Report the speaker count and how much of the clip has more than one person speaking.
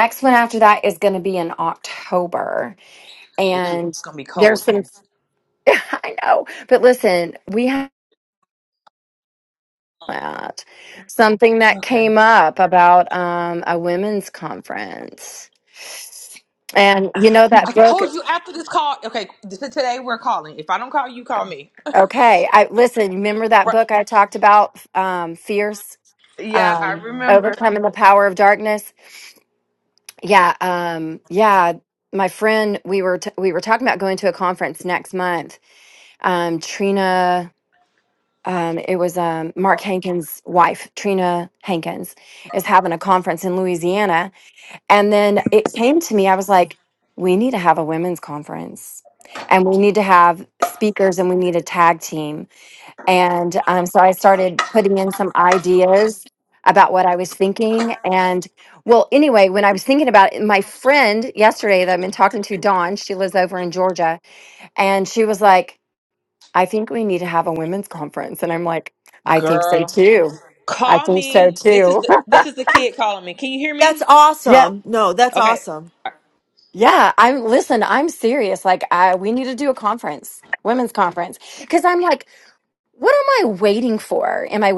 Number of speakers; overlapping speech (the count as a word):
three, about 6%